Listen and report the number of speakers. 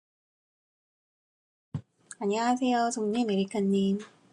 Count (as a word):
one